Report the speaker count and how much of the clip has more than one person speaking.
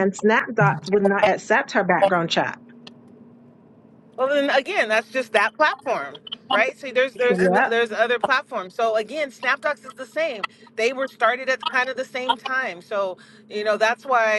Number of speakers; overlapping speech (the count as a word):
two, about 3%